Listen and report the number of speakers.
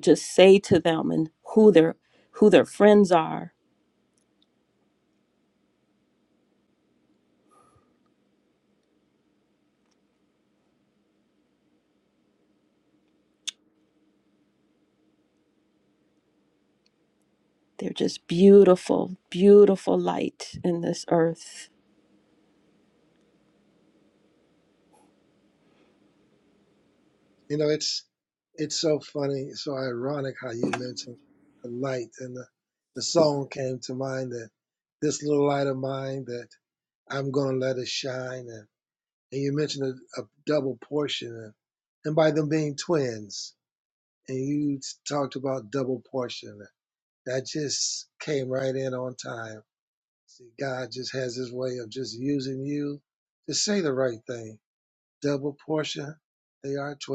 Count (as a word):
two